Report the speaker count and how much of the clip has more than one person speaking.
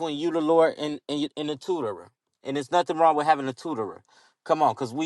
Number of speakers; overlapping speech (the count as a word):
one, no overlap